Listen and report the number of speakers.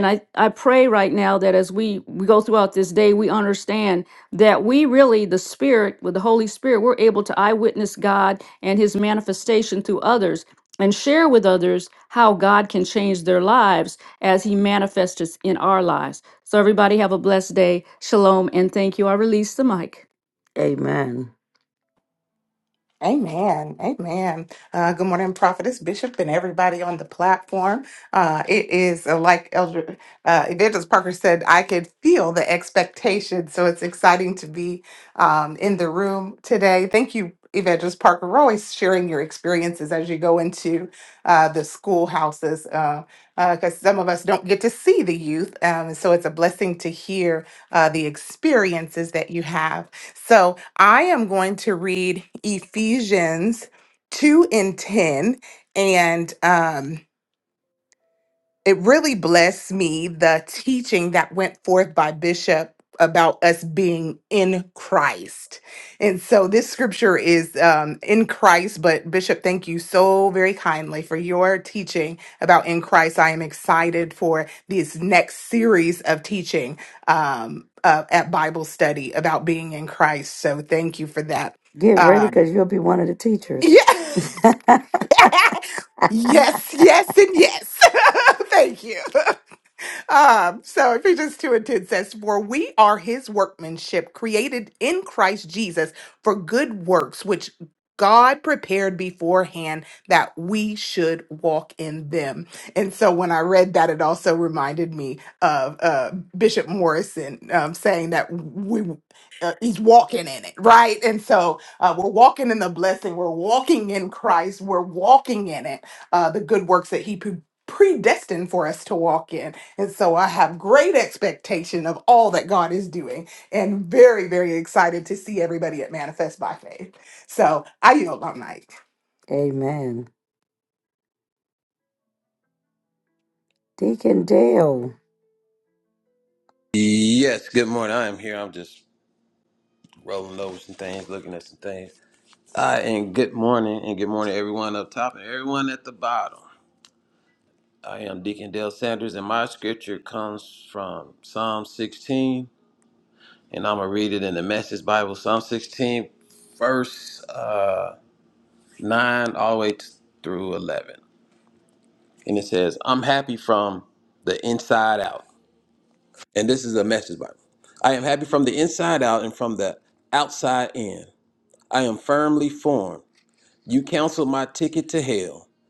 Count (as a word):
four